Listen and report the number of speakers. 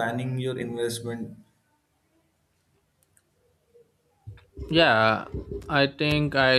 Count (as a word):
two